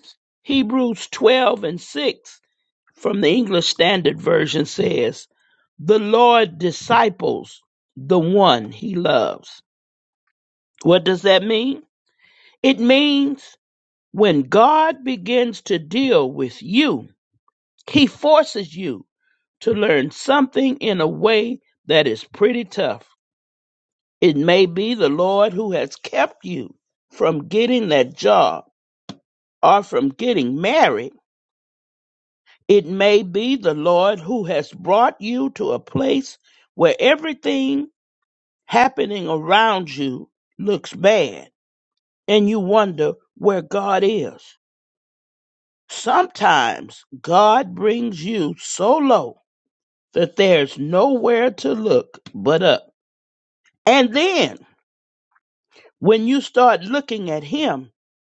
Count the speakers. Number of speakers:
one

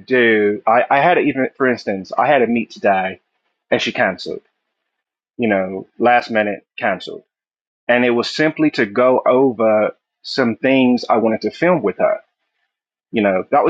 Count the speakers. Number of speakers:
one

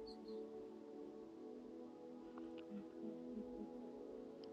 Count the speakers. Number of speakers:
zero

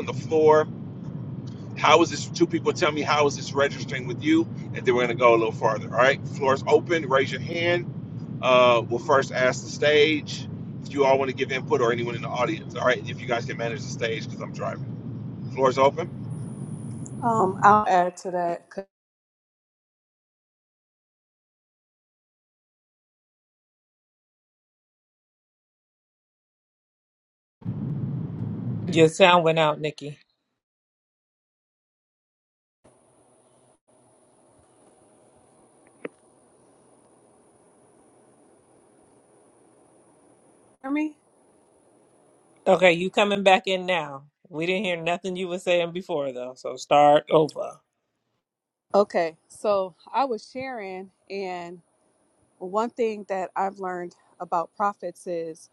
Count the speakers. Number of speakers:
three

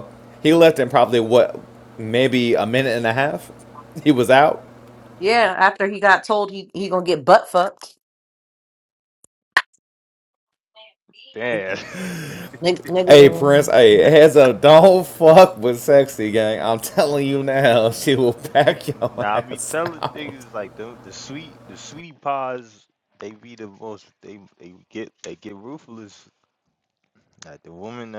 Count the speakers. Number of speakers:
three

